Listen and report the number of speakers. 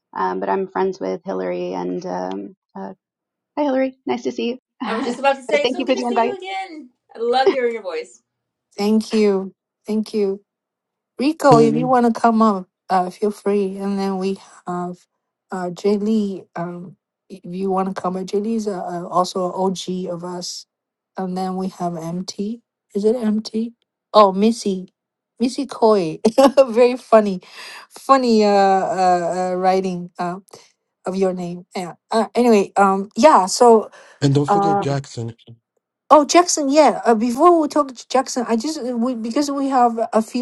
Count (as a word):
four